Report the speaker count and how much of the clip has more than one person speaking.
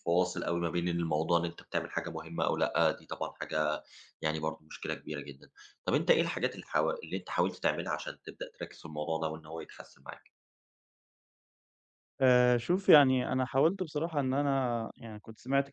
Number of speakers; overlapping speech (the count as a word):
two, no overlap